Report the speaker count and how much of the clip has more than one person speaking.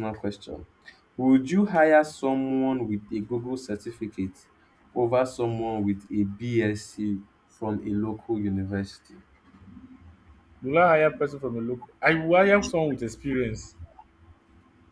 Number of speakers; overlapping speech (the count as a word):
two, no overlap